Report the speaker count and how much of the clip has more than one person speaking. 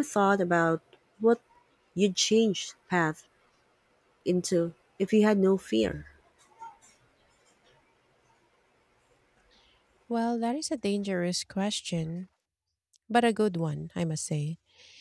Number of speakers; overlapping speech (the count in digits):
2, no overlap